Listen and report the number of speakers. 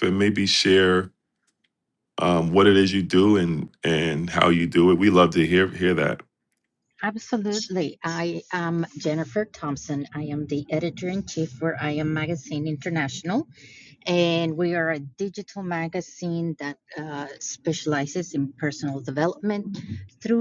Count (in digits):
2